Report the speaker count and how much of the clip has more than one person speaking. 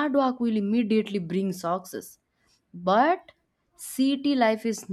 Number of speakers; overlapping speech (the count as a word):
one, no overlap